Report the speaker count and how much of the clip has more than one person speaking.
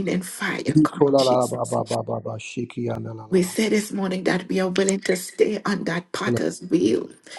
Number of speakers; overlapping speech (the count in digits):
2, about 21%